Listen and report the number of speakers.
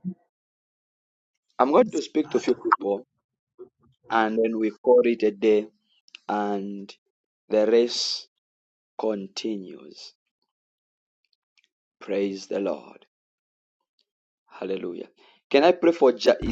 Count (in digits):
1